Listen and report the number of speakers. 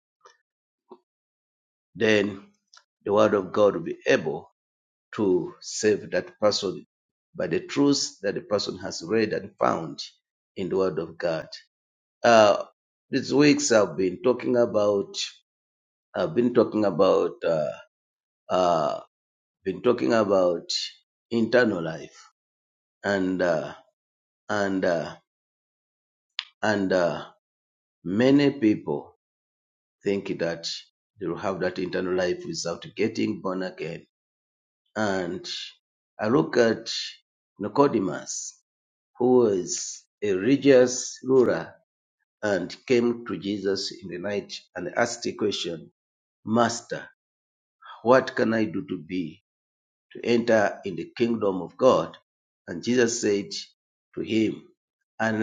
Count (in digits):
1